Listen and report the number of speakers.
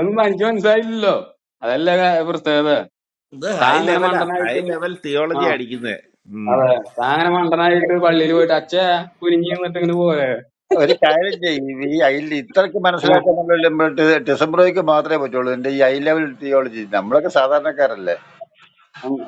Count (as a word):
three